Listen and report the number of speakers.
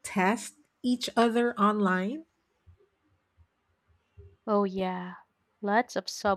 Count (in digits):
2